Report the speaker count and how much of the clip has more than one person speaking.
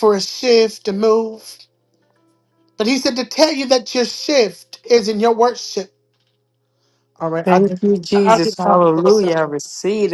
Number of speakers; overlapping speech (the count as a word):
two, about 15%